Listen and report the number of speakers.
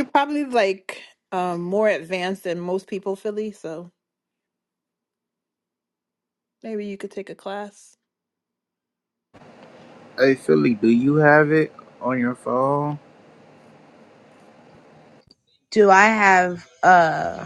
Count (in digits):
3